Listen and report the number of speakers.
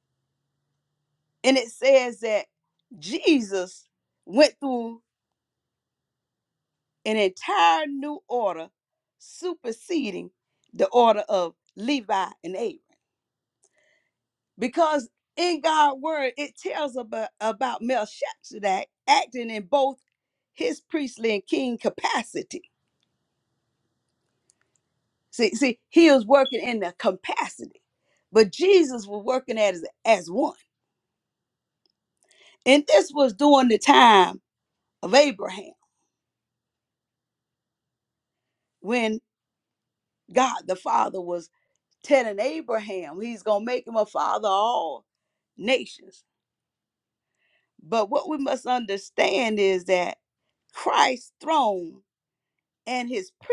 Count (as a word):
one